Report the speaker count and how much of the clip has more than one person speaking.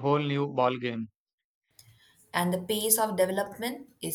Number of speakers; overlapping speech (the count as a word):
two, no overlap